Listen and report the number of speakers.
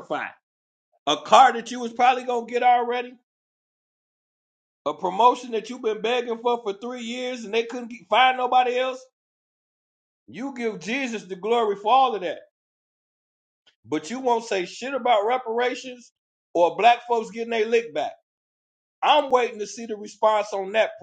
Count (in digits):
1